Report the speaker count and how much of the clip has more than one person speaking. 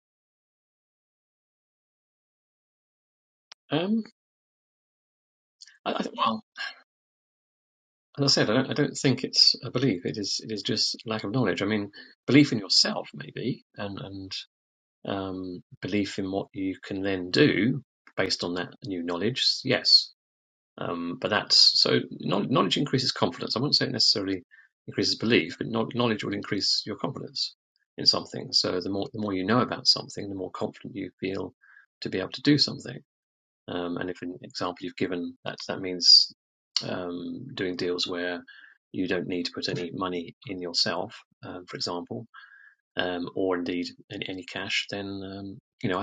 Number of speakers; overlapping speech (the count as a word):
one, no overlap